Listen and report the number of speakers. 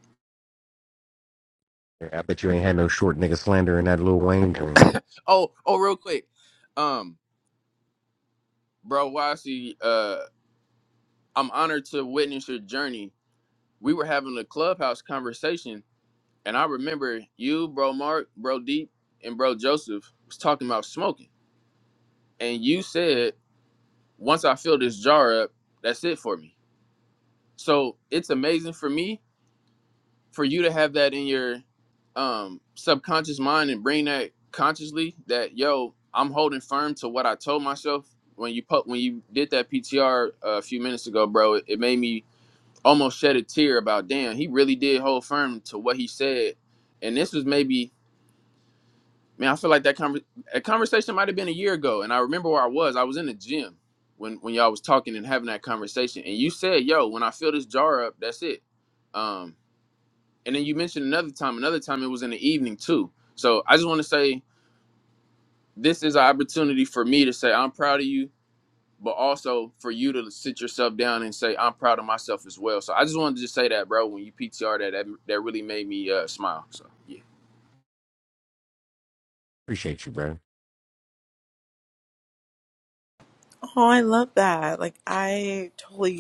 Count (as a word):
three